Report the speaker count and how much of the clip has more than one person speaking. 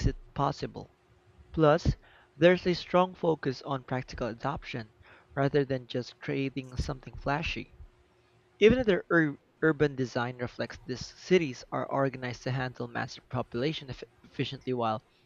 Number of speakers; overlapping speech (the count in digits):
1, no overlap